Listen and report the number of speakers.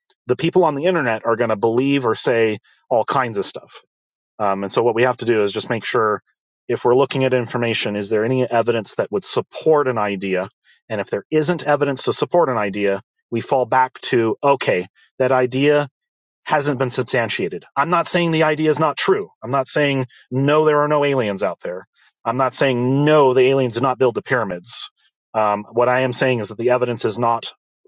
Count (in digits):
1